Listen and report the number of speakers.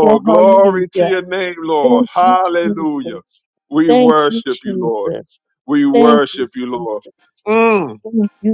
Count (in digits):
2